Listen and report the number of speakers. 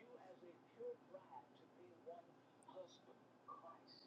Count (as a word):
zero